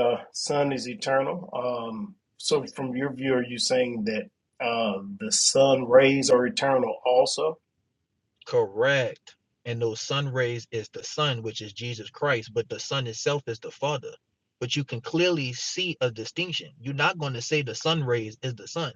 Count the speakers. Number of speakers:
2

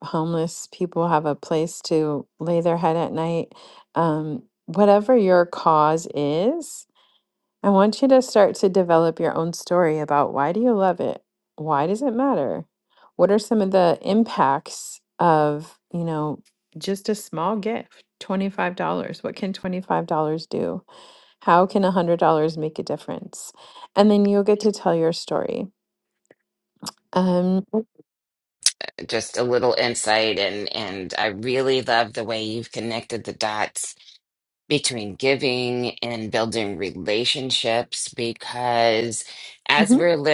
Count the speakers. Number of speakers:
2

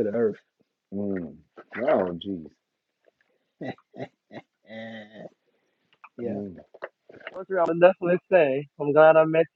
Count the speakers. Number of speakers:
3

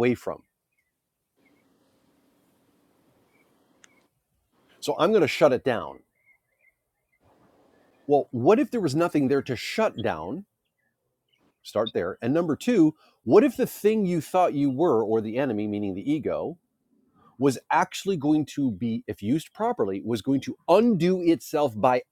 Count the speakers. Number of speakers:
1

